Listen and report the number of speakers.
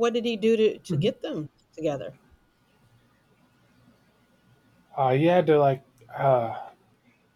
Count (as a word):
two